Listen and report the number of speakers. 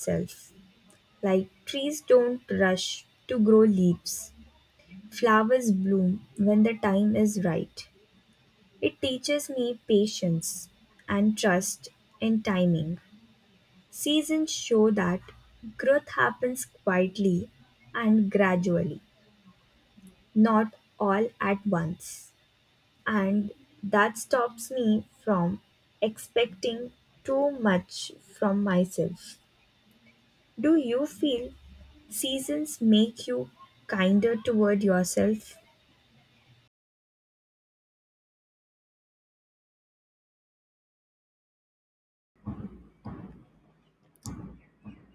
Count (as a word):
one